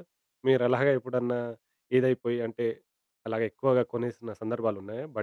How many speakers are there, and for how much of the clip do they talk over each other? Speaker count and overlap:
1, no overlap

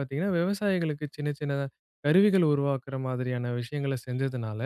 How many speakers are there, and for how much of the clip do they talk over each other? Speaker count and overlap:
1, no overlap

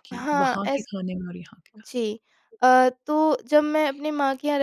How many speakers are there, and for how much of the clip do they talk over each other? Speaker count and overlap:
2, about 16%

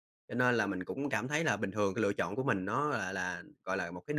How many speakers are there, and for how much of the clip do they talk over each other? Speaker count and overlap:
1, no overlap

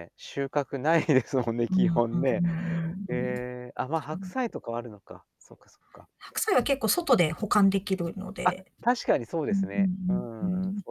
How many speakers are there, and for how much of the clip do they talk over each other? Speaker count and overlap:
2, about 12%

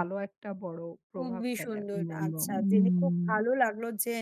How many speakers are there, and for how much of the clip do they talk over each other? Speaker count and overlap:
2, about 51%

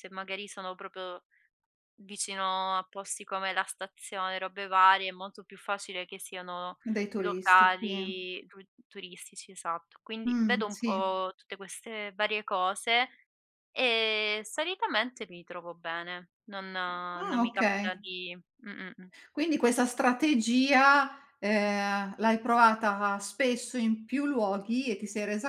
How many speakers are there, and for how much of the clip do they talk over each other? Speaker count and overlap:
2, about 10%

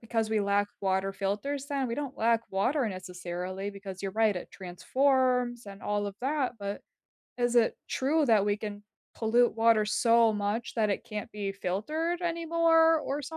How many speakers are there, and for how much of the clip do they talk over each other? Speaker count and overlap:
1, no overlap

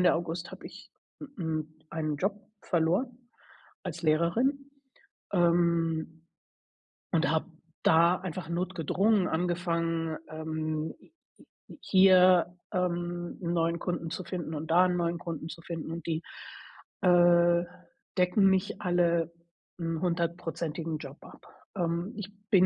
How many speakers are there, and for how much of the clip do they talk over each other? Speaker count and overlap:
1, no overlap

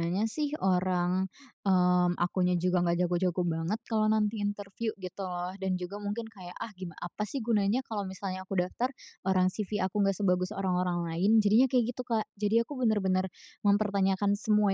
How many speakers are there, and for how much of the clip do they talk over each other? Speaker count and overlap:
1, no overlap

